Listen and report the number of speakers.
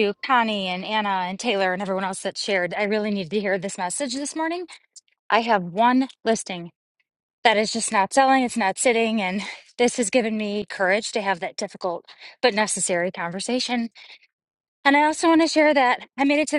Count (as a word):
one